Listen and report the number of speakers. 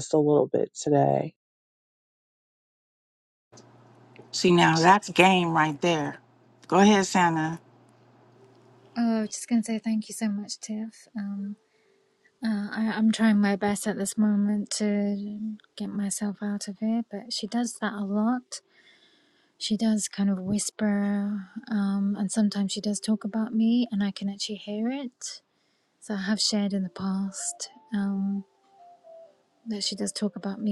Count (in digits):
3